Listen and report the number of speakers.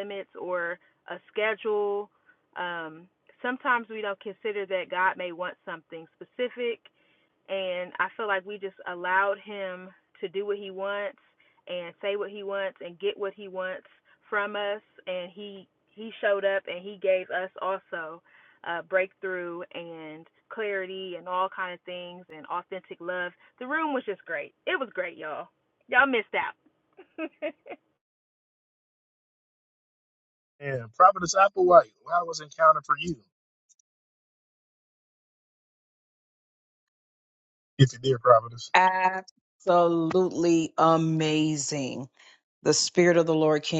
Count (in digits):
3